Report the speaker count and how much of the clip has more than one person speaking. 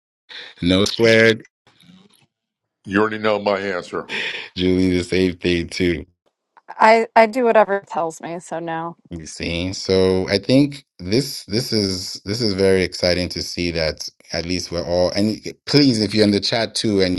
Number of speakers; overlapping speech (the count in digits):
3, no overlap